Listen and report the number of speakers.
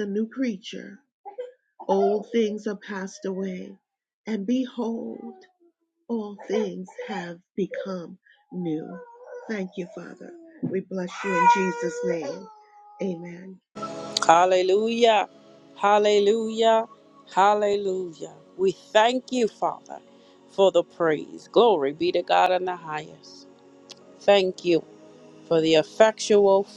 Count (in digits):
2